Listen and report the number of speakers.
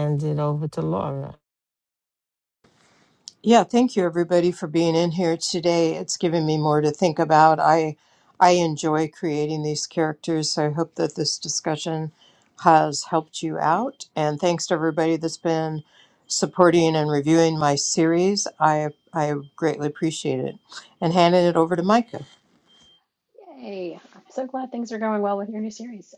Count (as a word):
three